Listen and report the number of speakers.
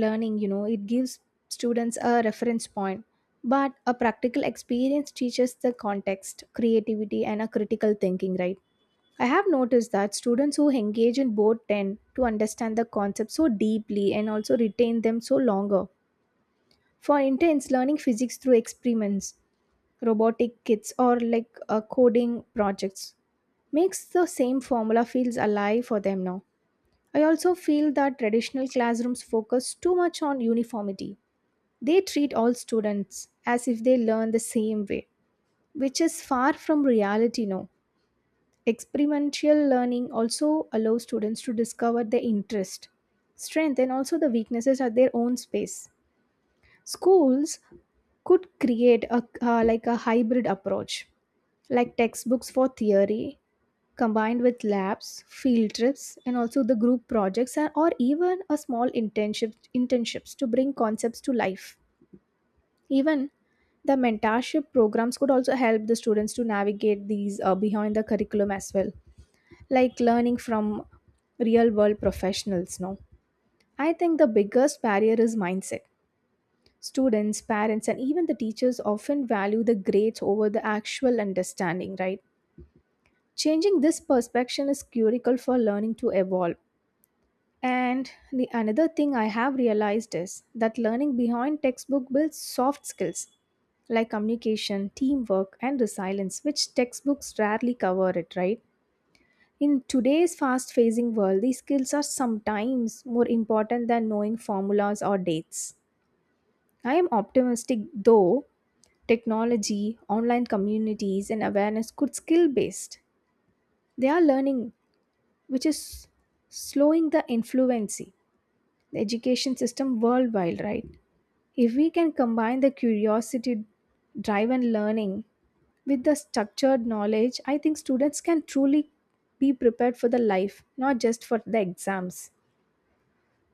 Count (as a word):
one